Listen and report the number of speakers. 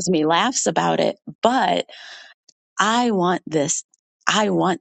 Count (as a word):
one